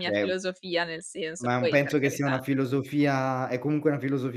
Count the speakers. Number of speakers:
2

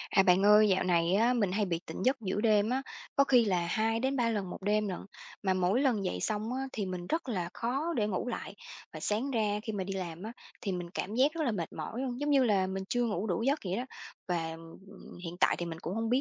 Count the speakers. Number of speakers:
1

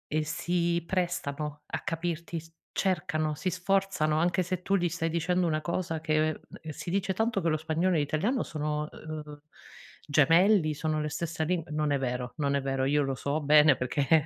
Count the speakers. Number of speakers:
1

